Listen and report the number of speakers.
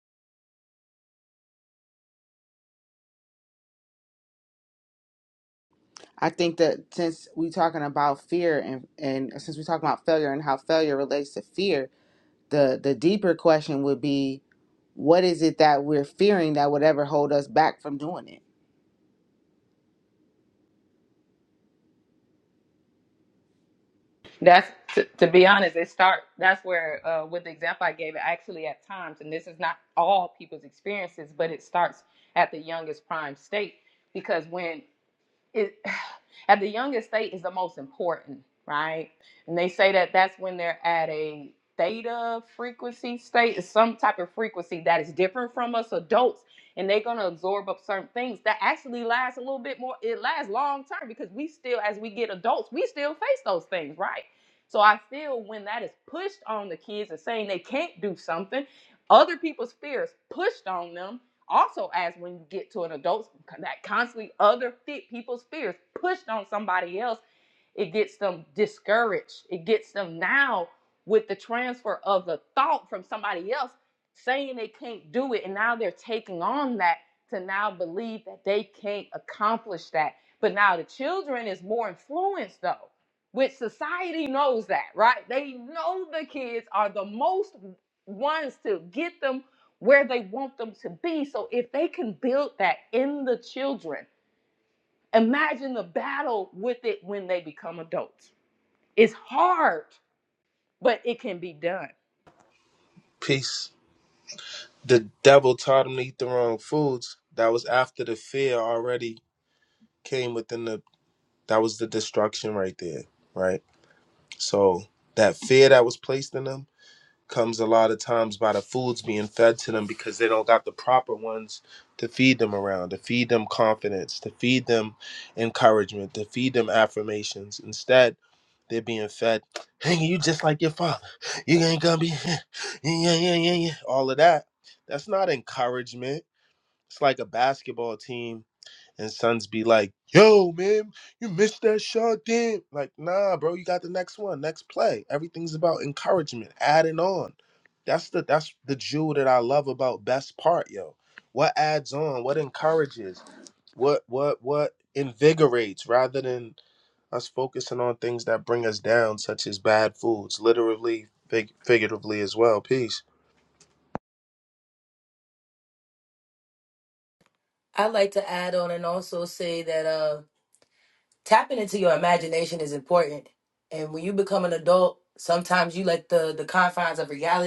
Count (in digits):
4